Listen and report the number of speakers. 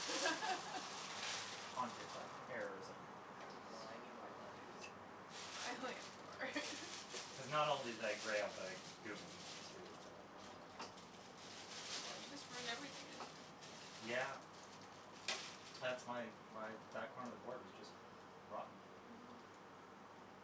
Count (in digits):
2